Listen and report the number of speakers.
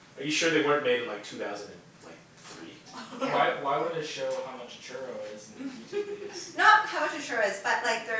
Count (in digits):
3